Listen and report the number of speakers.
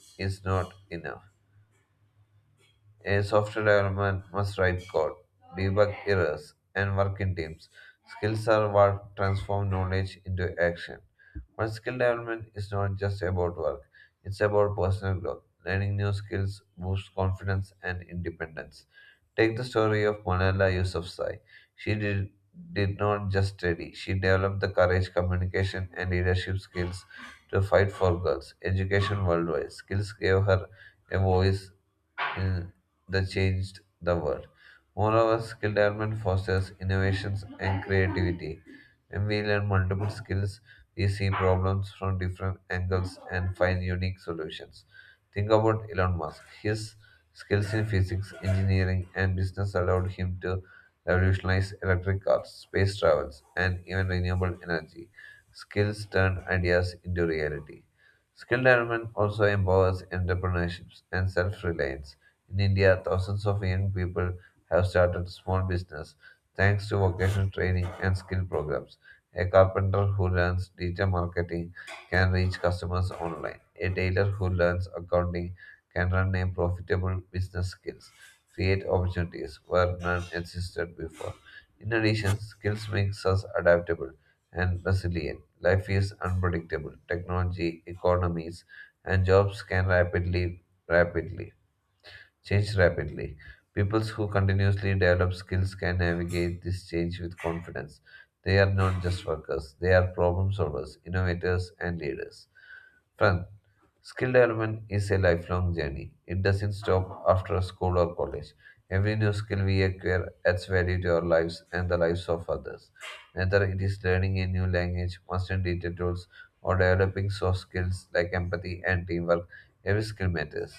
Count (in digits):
1